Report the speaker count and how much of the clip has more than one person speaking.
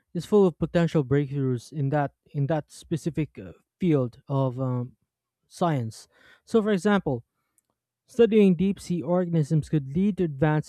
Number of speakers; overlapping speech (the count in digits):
1, no overlap